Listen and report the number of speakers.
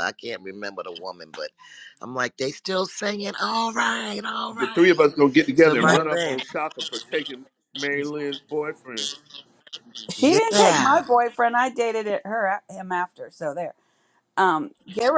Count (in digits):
3